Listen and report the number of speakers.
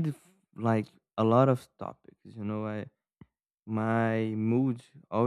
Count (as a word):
one